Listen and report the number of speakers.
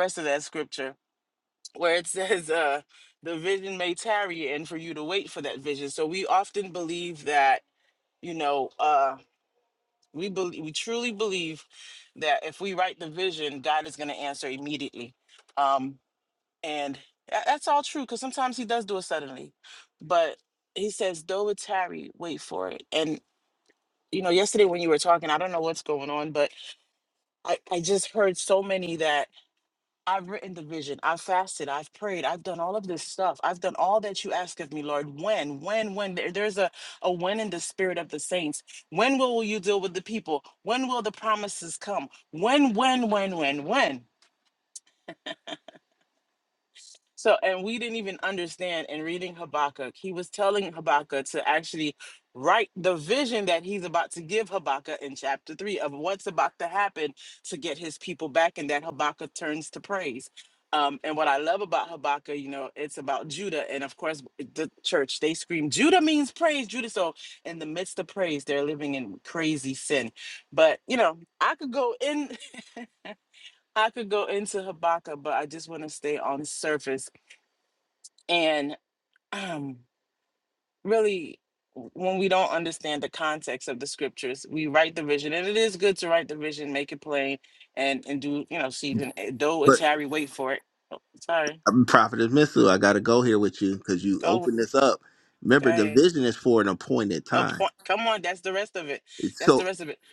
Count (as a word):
two